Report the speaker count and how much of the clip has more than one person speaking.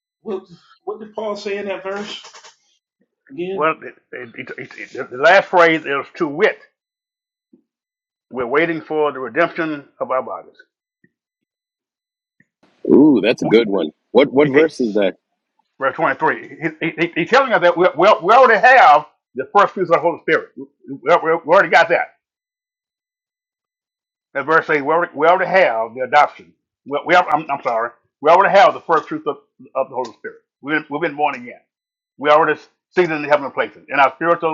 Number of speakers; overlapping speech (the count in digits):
3, about 1%